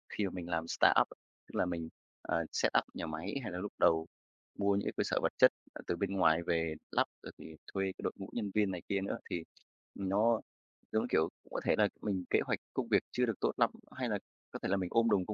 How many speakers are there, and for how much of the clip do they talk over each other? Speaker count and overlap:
one, no overlap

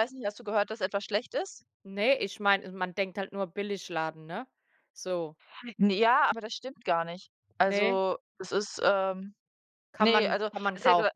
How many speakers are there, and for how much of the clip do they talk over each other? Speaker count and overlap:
two, about 11%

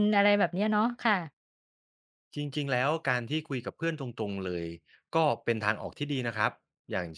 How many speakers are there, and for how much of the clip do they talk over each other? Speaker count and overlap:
two, no overlap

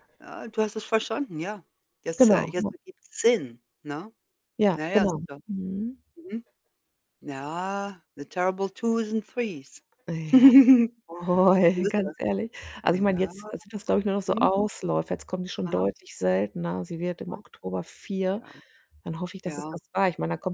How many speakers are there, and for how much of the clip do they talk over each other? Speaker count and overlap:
two, about 15%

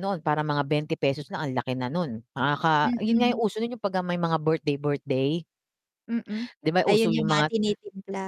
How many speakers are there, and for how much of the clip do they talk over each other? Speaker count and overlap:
two, about 15%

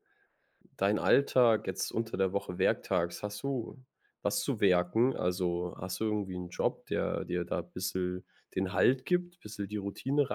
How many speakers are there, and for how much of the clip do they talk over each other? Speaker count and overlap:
one, no overlap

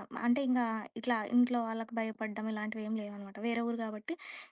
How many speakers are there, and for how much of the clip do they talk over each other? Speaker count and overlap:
one, no overlap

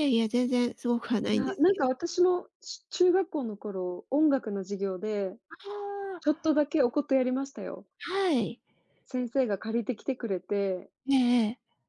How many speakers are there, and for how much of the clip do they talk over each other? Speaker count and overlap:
two, about 6%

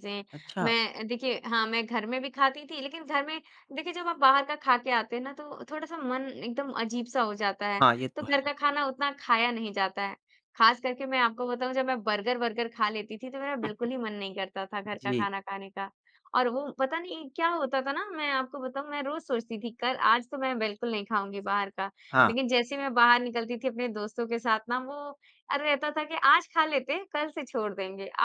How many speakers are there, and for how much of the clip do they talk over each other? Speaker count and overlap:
two, about 3%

